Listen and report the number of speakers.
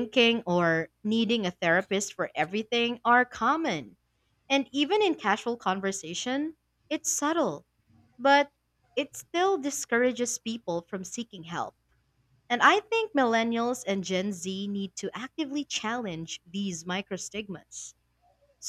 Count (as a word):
one